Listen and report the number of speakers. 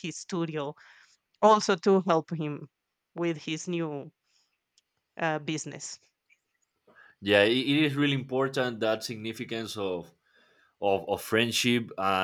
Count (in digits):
2